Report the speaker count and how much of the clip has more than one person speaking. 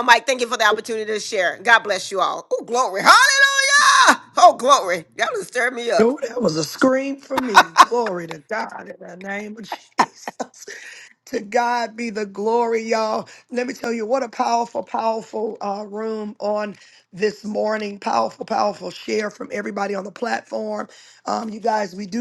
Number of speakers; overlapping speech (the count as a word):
two, about 1%